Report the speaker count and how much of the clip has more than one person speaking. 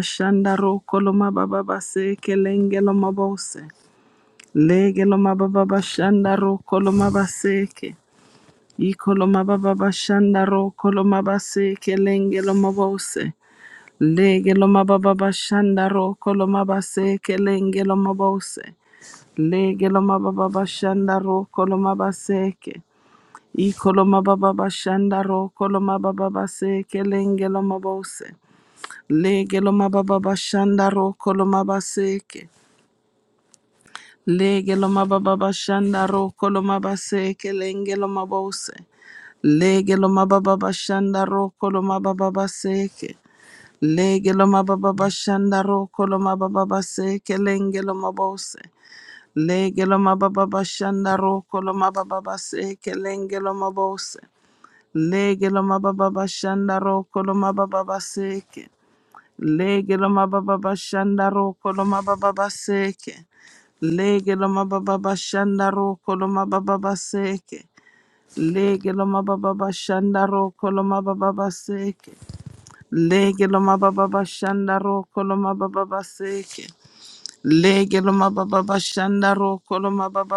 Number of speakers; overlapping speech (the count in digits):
1, no overlap